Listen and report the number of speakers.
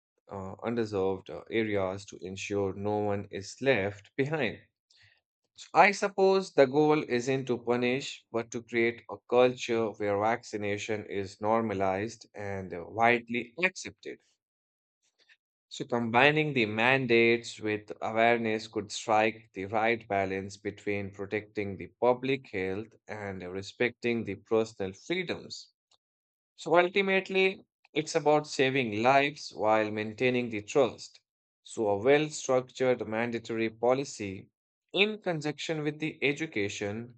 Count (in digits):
1